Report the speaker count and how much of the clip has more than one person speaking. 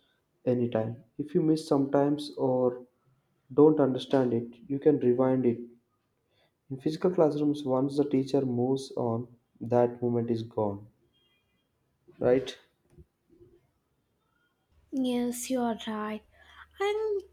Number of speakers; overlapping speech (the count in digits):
2, no overlap